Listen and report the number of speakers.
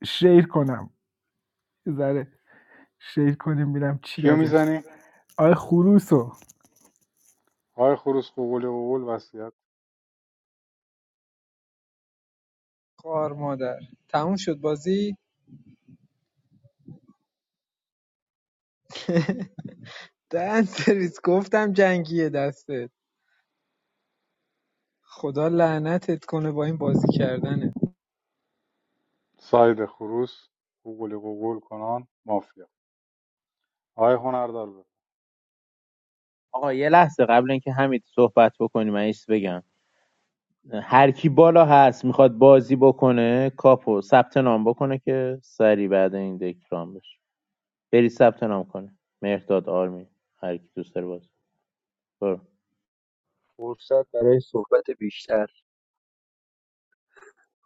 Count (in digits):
5